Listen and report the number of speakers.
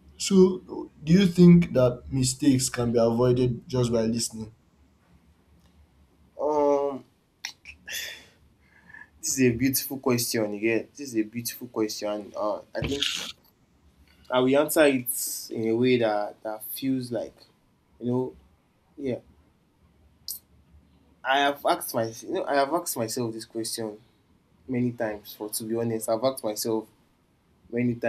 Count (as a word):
two